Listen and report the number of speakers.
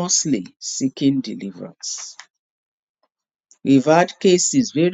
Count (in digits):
1